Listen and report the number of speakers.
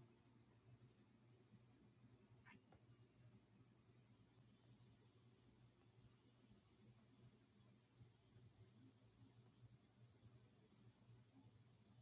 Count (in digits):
0